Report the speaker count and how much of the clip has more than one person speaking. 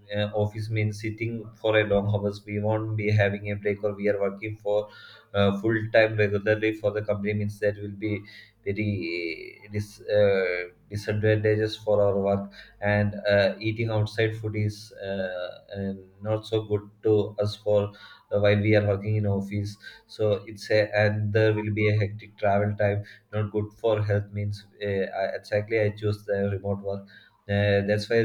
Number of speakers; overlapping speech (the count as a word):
one, no overlap